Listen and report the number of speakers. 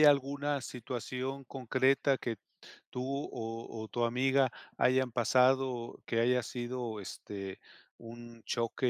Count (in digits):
1